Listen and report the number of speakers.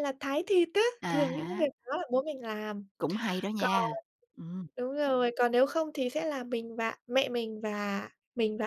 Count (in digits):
2